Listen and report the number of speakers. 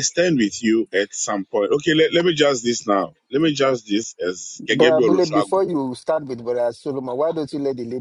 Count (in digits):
2